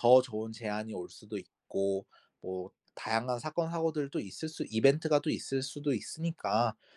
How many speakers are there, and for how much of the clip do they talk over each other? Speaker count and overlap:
1, no overlap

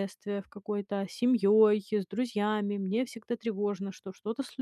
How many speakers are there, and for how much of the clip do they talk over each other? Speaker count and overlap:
1, no overlap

